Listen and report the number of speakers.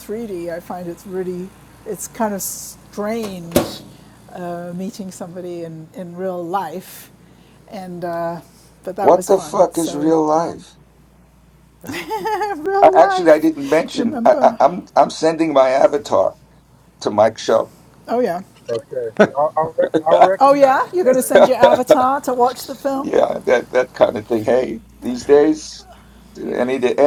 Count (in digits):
3